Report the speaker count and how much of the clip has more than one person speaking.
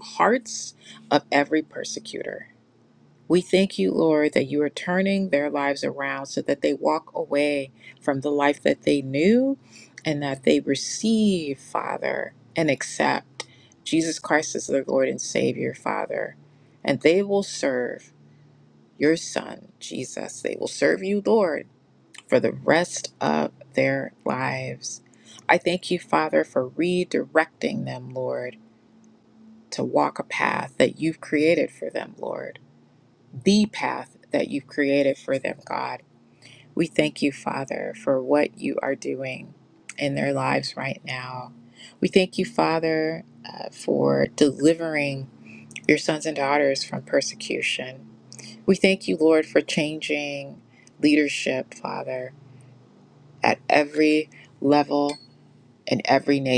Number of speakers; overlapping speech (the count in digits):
1, no overlap